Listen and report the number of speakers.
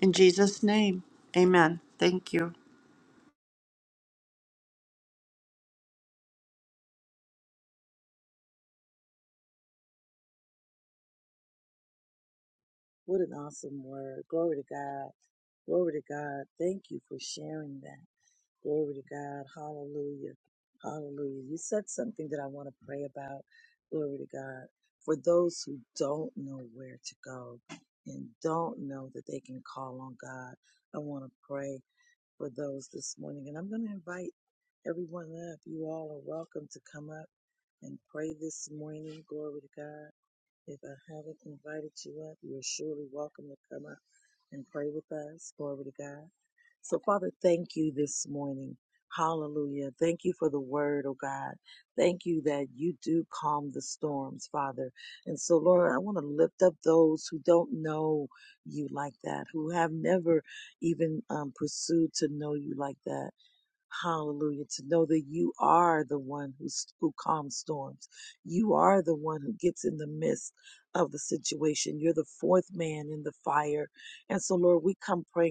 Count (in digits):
2